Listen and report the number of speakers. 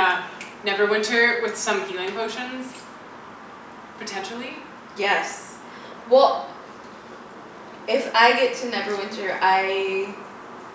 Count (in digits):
2